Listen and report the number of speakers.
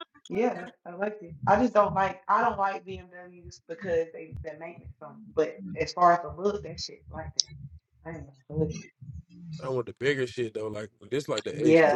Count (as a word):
two